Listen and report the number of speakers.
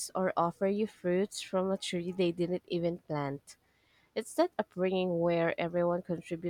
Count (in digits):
1